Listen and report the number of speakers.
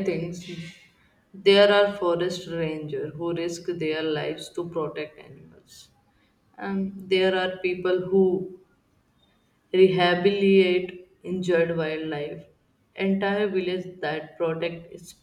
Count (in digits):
1